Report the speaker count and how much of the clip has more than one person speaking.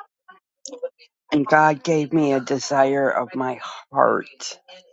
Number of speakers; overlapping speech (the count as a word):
one, no overlap